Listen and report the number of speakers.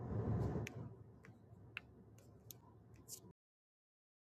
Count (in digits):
0